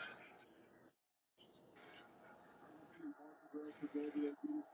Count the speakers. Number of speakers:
0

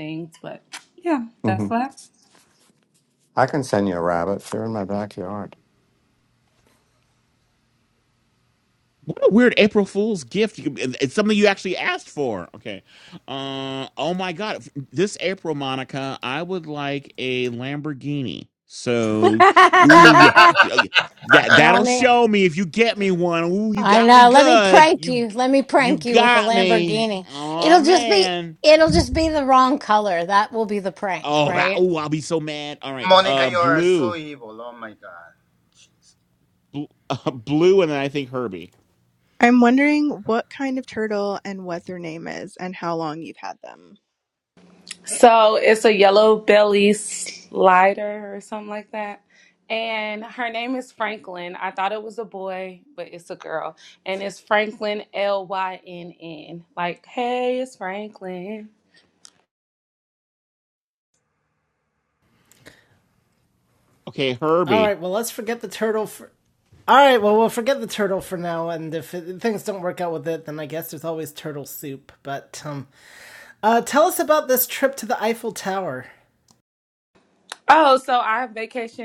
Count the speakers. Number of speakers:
7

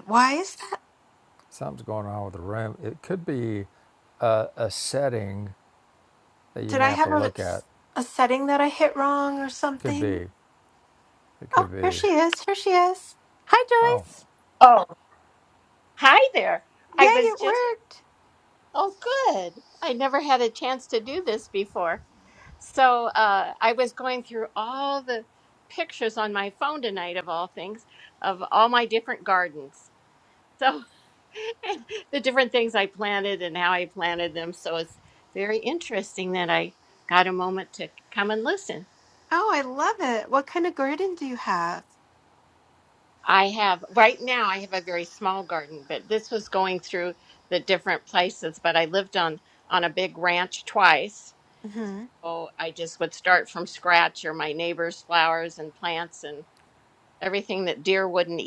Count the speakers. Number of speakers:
3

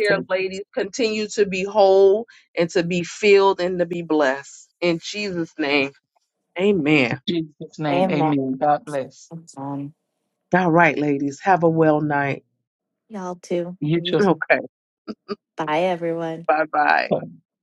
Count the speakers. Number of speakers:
3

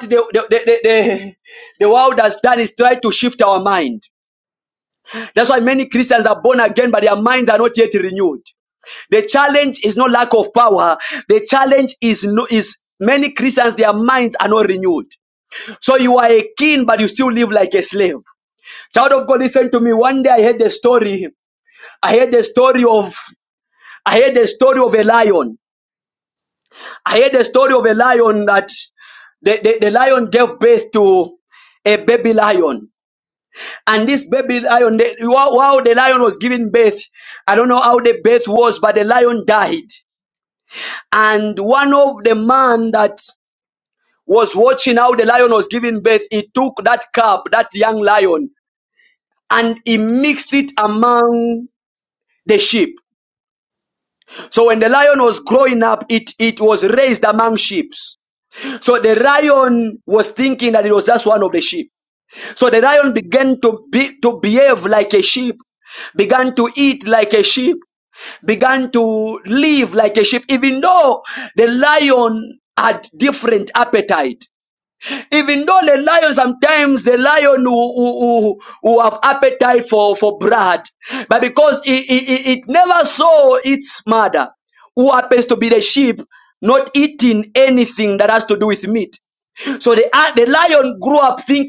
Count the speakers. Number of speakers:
1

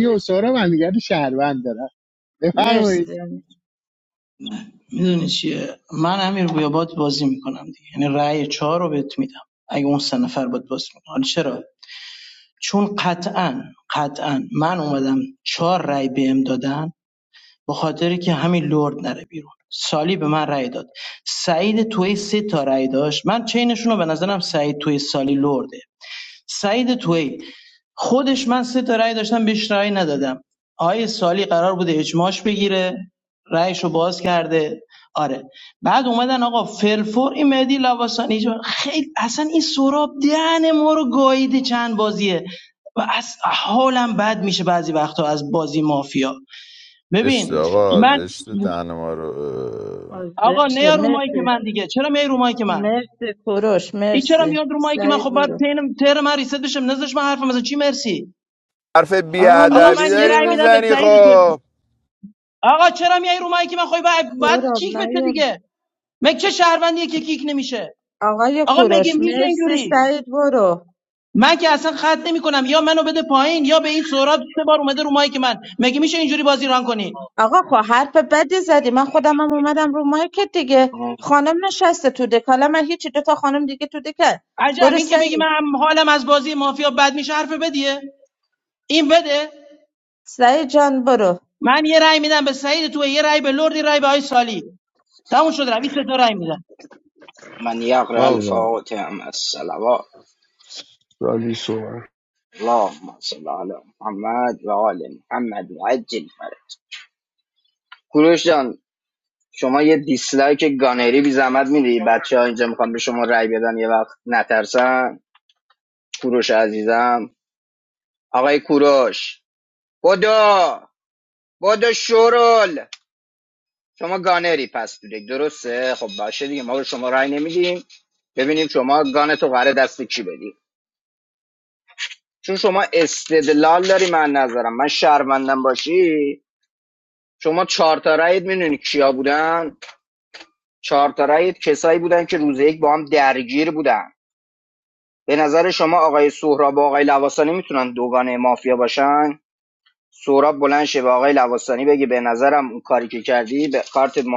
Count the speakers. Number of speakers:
6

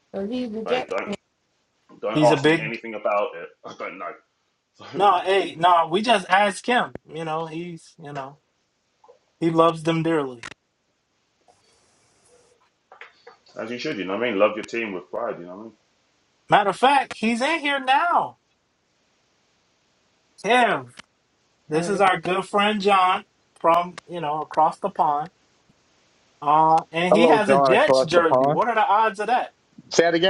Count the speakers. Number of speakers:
4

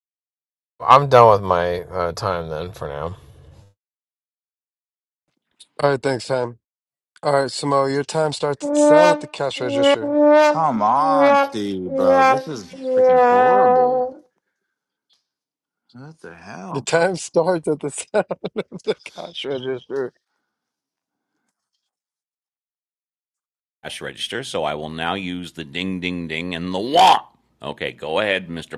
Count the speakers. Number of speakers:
4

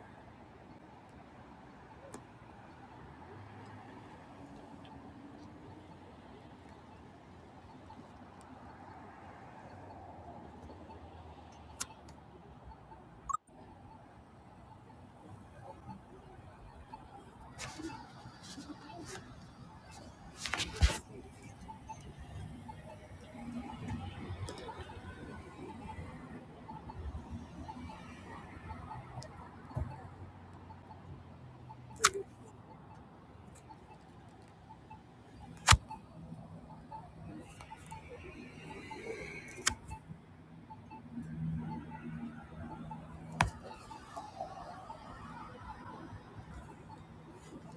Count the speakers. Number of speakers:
0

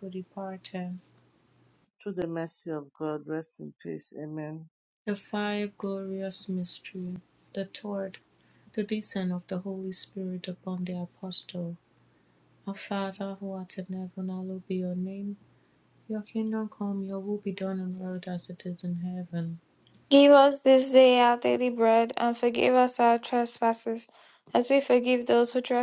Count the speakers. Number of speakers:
3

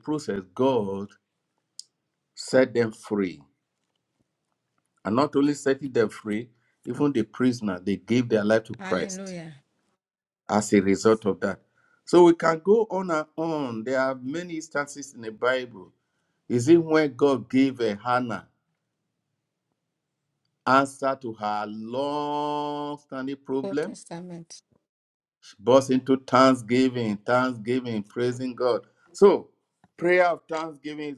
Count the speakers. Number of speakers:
2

